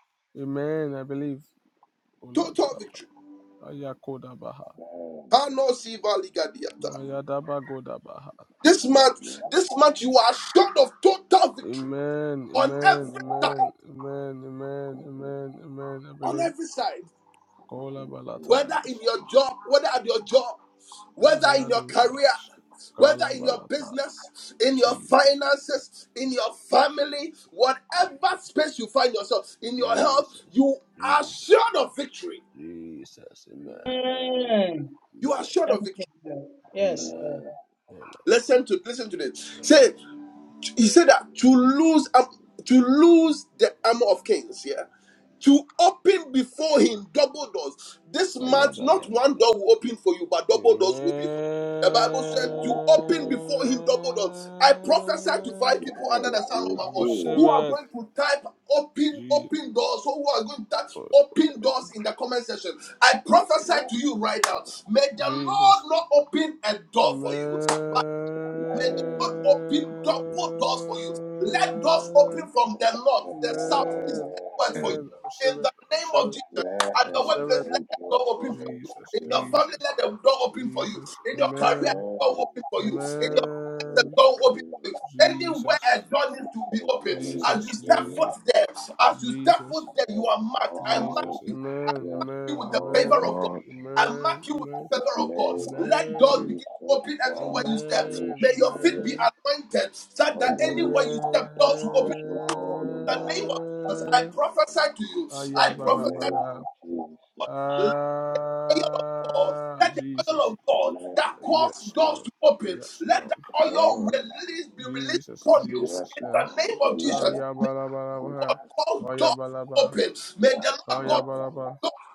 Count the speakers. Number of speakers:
4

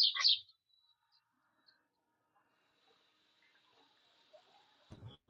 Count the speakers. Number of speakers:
0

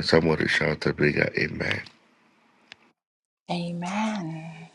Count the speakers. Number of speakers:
2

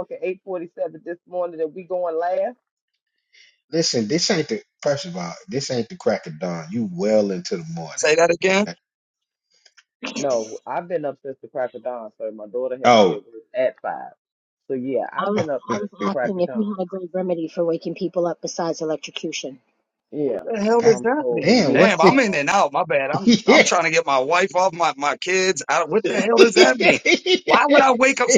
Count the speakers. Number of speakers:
4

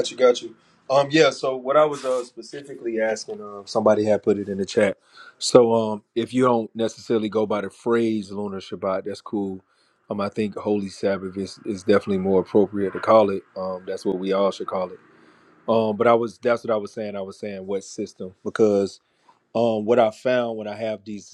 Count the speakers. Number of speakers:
1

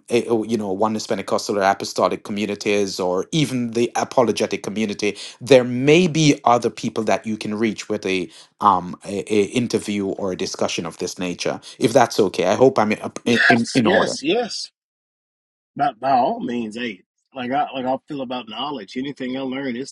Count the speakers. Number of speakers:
2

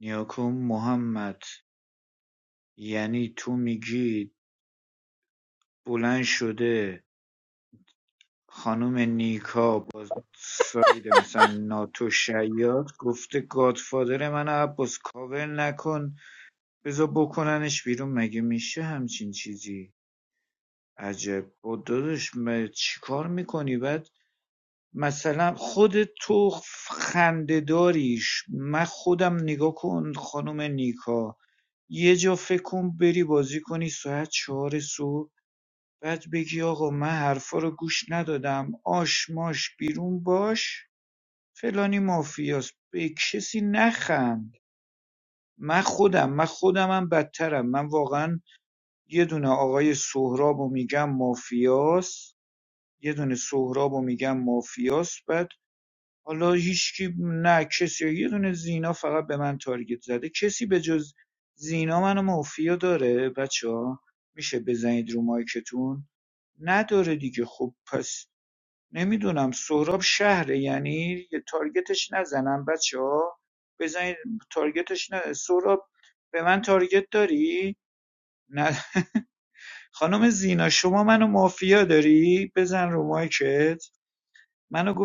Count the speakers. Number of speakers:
1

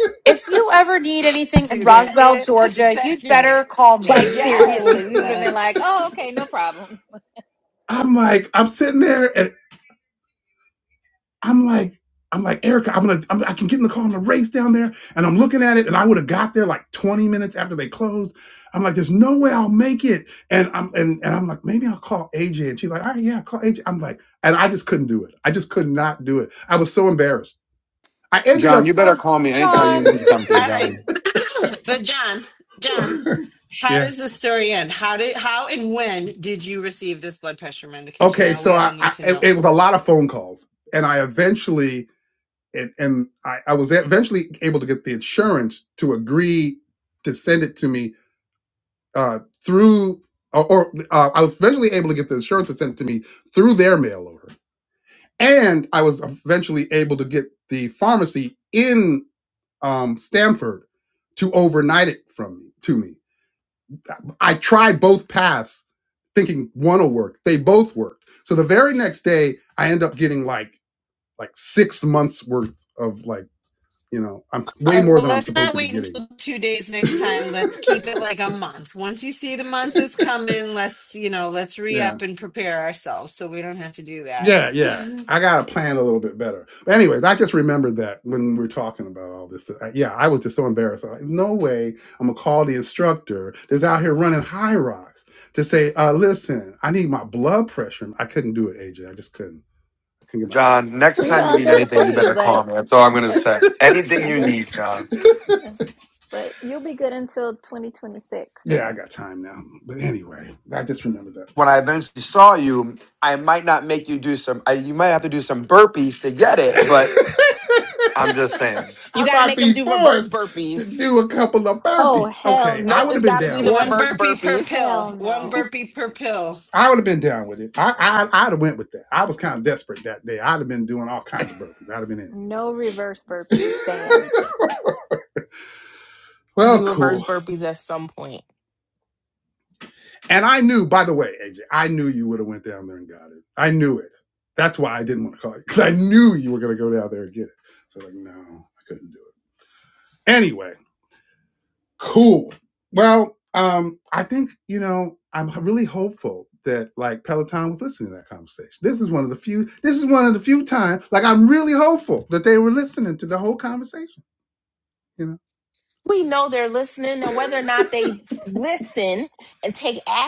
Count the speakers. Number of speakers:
6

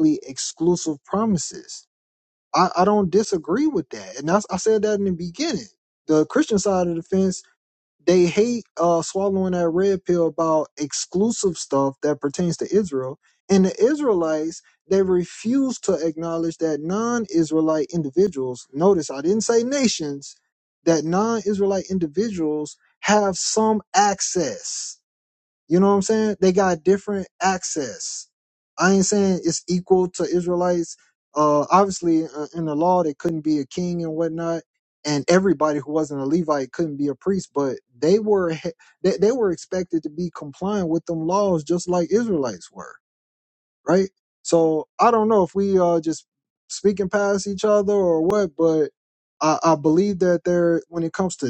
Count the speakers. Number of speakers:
1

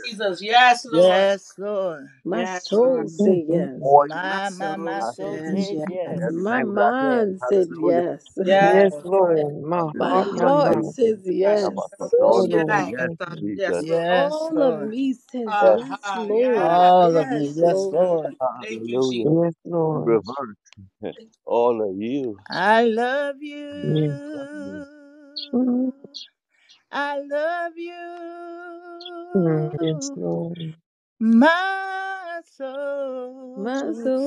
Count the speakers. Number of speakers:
5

